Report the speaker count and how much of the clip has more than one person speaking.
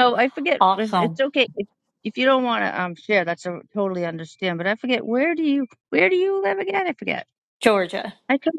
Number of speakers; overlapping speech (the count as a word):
two, about 6%